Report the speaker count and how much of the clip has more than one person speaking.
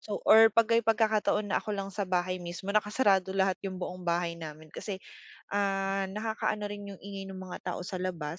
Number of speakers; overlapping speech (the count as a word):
one, no overlap